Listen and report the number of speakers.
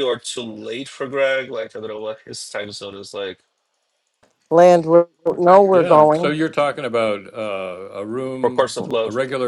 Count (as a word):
three